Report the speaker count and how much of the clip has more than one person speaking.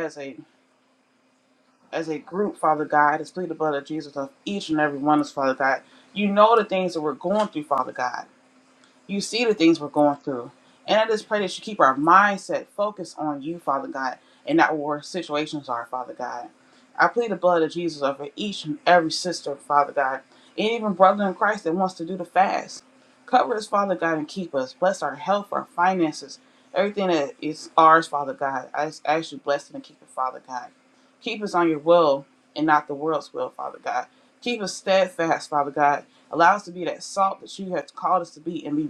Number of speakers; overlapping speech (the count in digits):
1, no overlap